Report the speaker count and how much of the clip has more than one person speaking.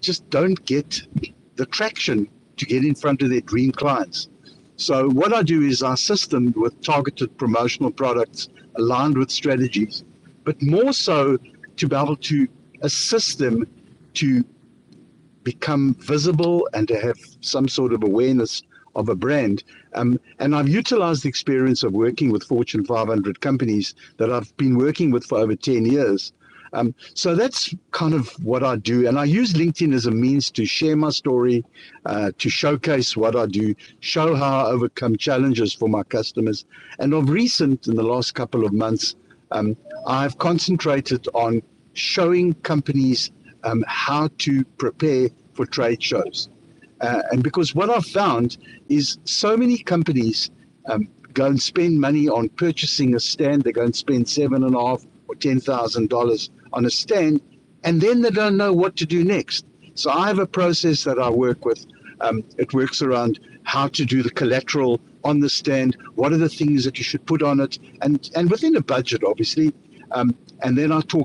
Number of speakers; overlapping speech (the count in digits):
1, no overlap